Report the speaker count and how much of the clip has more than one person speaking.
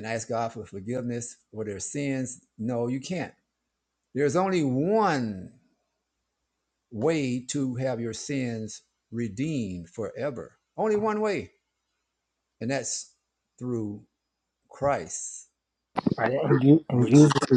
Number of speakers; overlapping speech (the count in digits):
2, about 4%